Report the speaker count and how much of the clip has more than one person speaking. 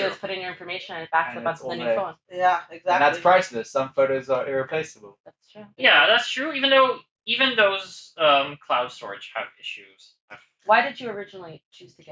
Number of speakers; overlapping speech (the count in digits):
4, about 14%